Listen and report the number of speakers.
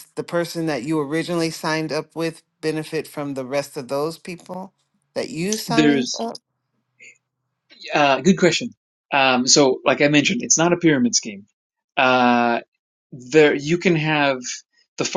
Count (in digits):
2